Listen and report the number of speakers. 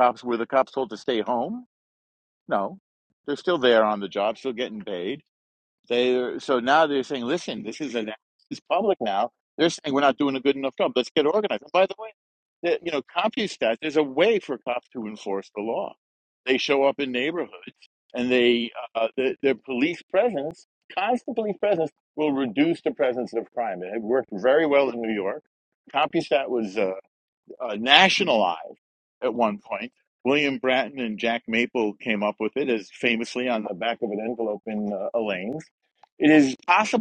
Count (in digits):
1